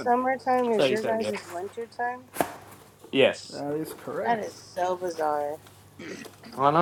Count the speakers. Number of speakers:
three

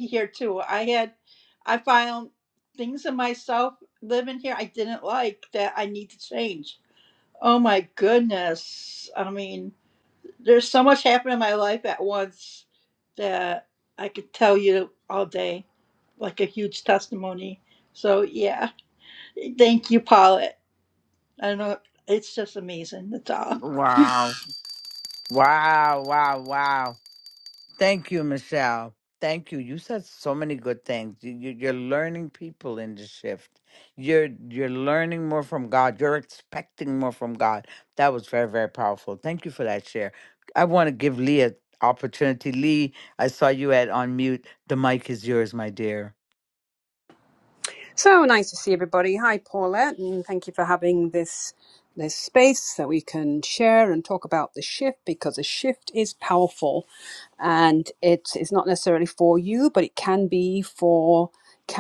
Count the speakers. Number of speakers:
three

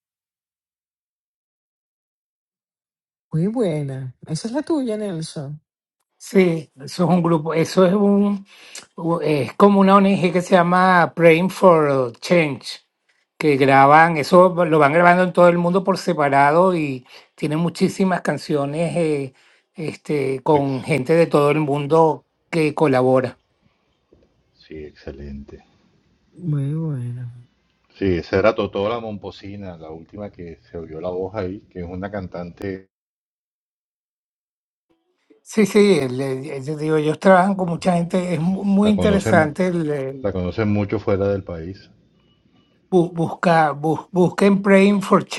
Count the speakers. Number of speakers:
three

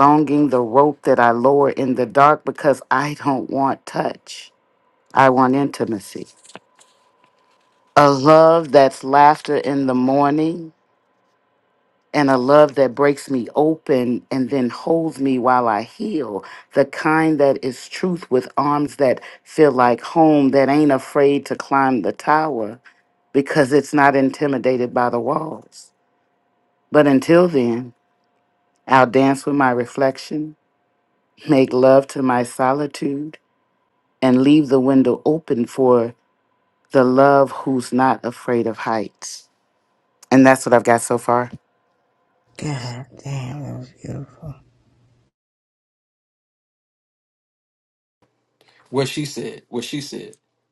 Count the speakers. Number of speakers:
three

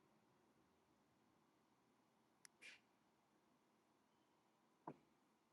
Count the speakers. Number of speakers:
zero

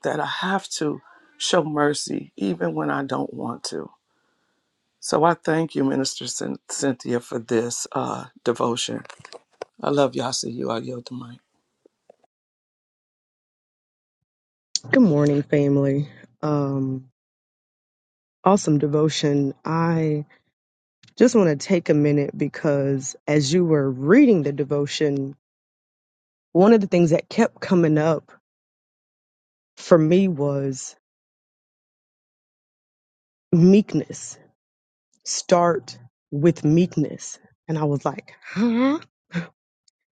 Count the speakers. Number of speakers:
two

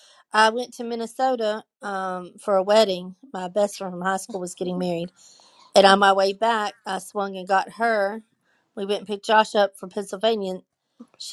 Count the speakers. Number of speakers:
one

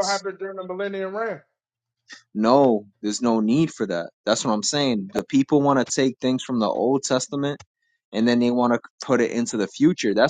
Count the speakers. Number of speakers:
two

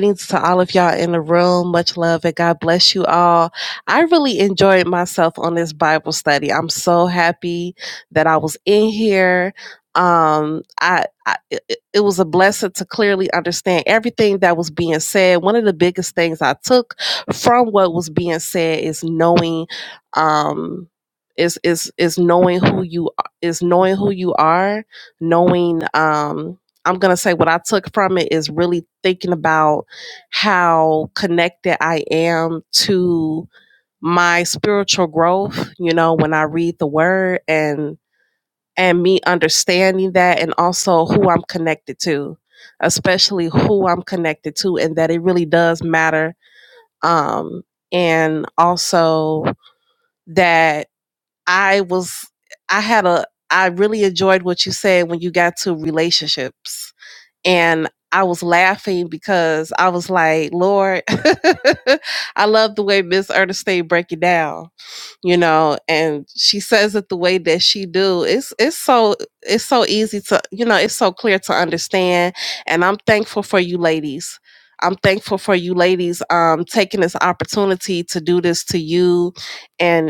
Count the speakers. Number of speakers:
one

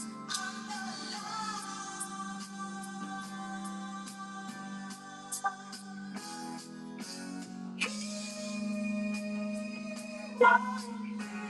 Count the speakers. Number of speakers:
zero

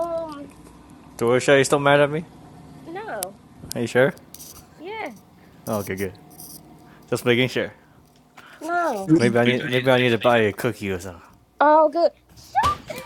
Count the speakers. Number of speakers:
two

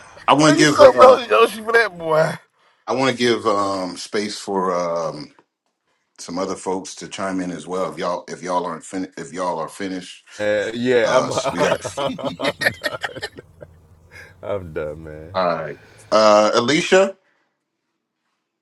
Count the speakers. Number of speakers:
three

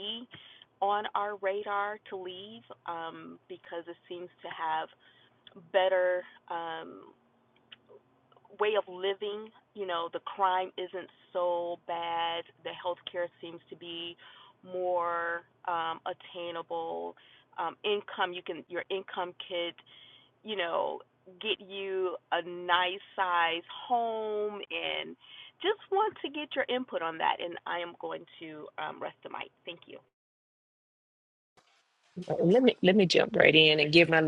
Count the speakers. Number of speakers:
two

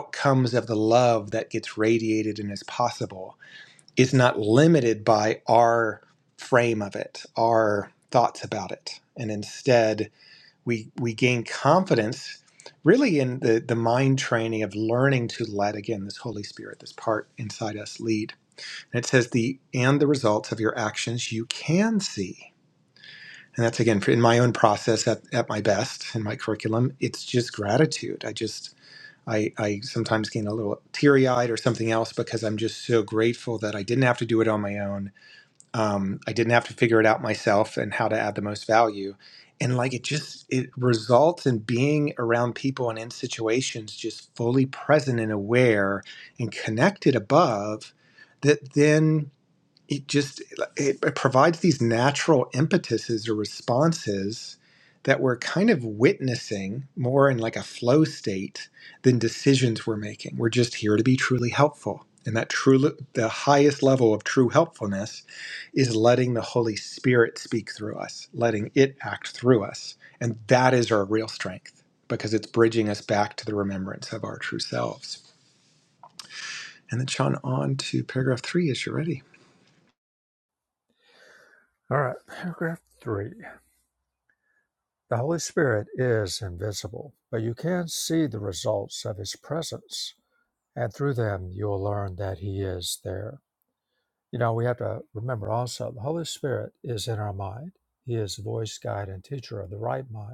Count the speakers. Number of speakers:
two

